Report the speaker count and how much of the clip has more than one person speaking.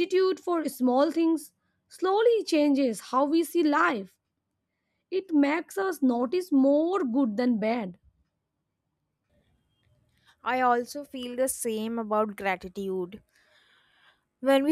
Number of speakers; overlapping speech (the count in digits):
2, no overlap